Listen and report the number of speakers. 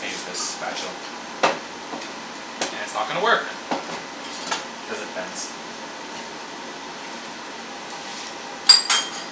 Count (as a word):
one